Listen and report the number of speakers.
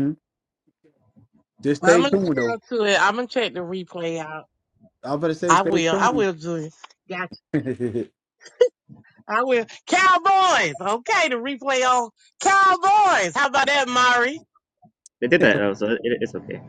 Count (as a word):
three